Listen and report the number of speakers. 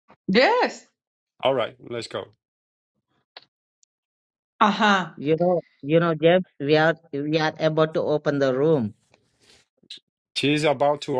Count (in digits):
3